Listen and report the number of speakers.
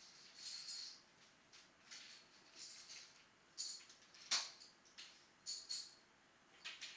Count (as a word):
zero